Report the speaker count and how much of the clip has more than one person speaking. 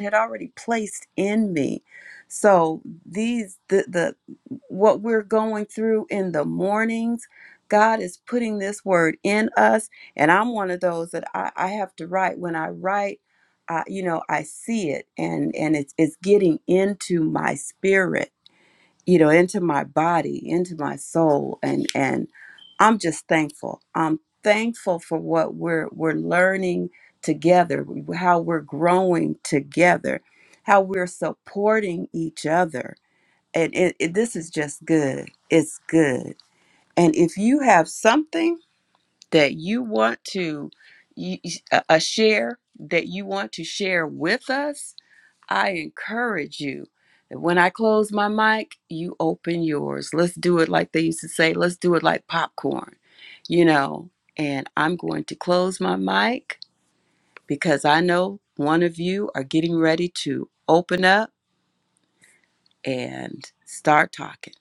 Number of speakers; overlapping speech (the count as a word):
one, no overlap